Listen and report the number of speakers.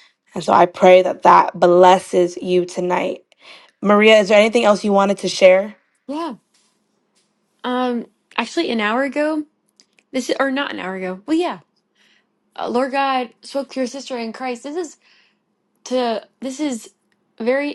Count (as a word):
two